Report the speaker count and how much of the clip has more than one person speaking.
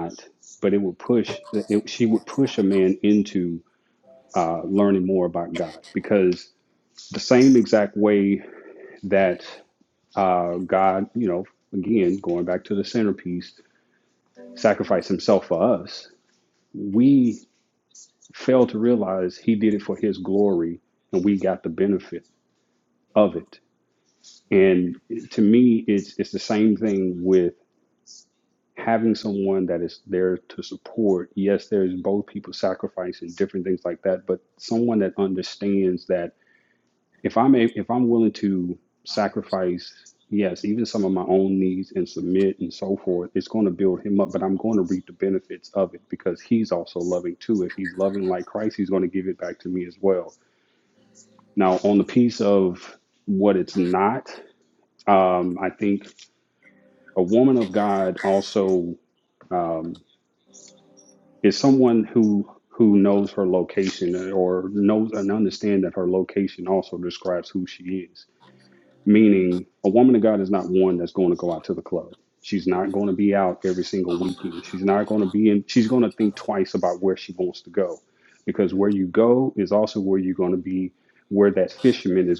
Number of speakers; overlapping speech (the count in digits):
1, no overlap